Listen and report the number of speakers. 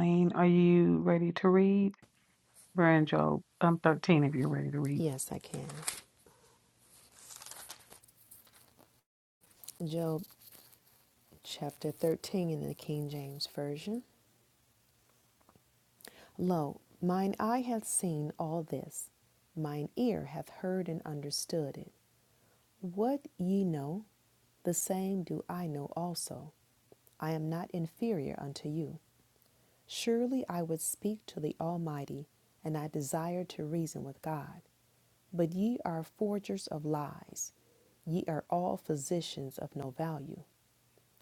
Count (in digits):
2